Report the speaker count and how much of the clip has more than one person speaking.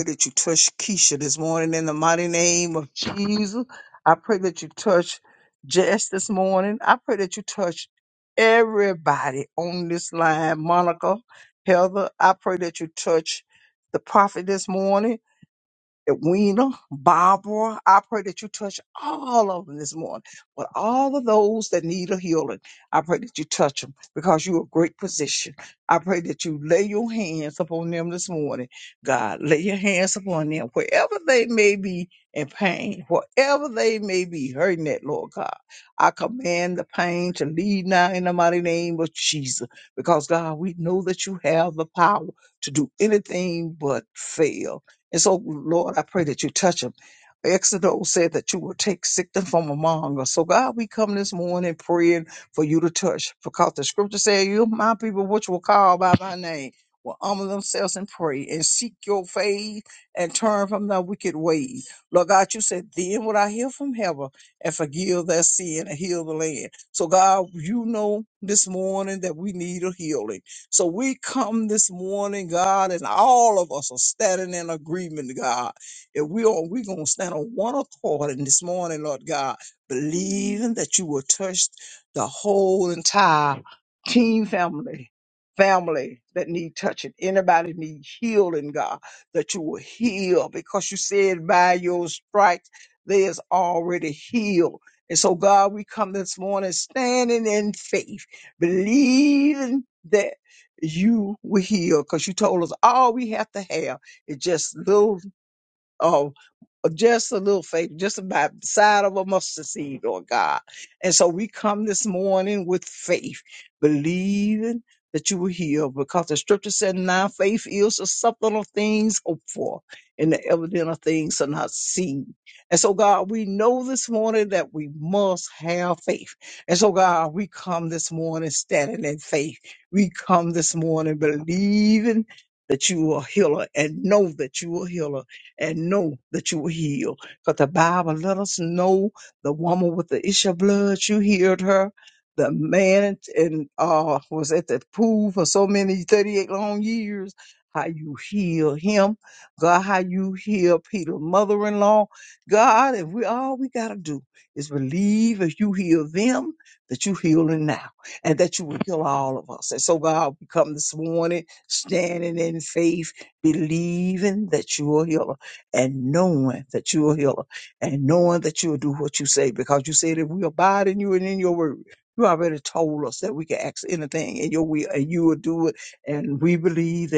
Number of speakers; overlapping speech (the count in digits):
1, no overlap